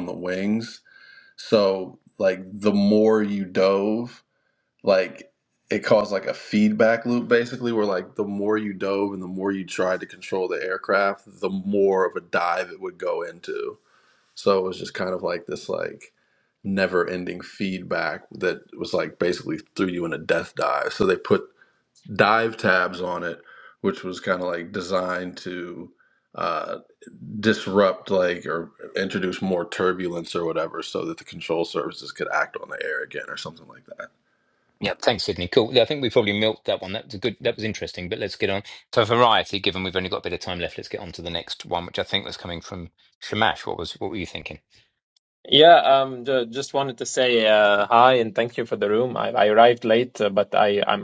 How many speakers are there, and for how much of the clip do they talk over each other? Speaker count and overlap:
3, no overlap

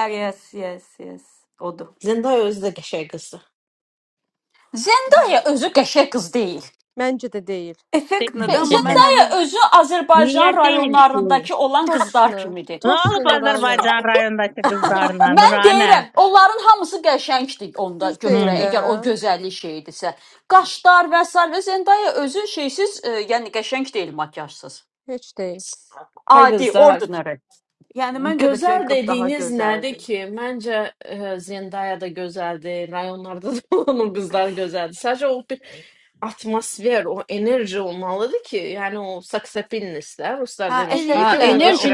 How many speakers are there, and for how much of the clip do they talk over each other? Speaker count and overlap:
5, about 22%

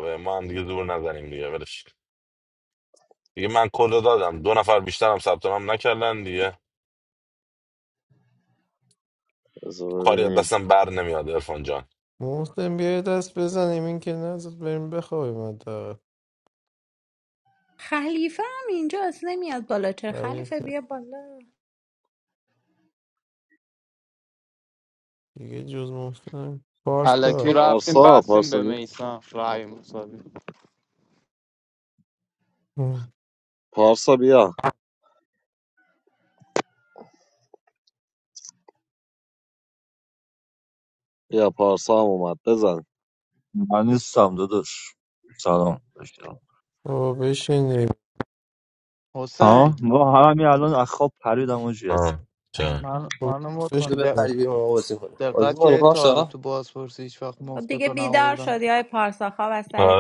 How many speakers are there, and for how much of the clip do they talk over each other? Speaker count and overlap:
7, about 10%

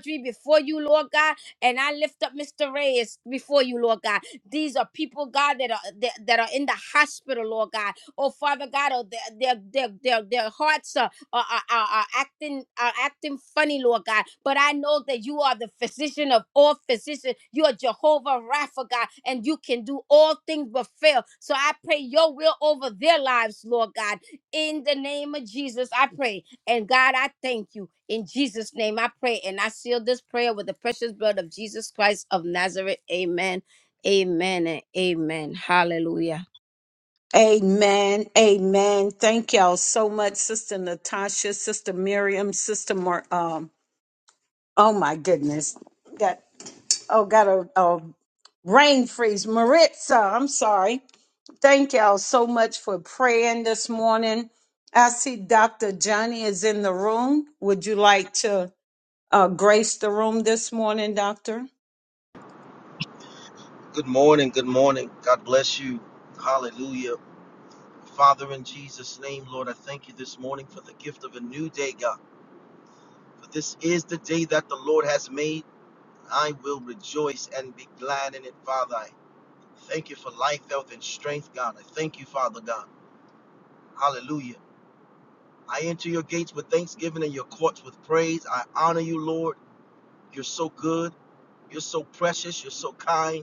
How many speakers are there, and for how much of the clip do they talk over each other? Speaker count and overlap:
3, no overlap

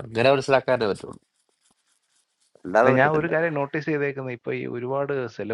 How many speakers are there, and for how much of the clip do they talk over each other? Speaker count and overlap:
2, about 9%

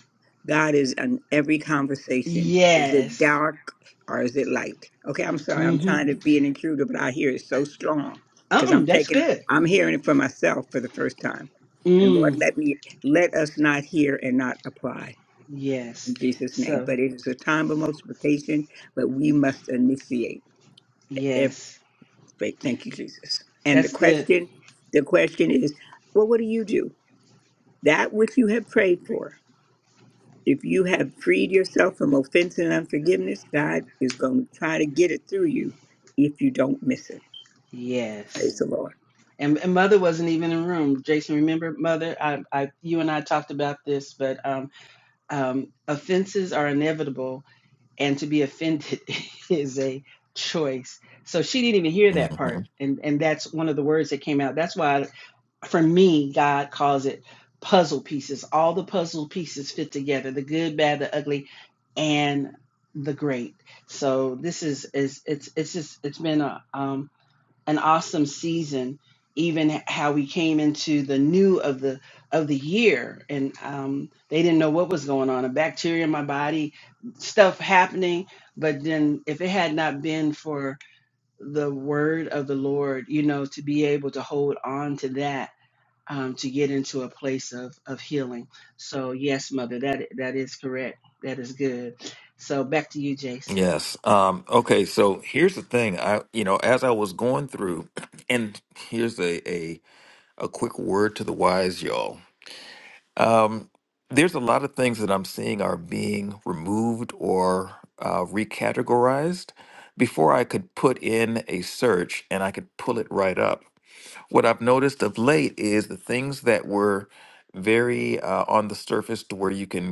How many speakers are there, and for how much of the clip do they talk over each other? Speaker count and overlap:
3, about 3%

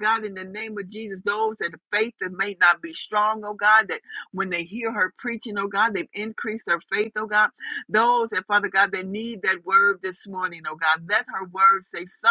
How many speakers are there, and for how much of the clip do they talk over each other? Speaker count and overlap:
1, no overlap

